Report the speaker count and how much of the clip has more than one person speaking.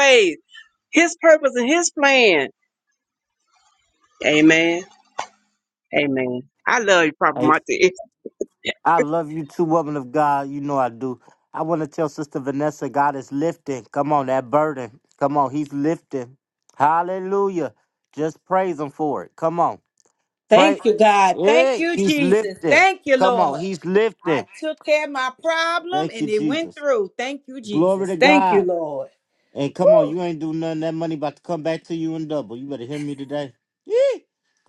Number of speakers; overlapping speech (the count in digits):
3, about 13%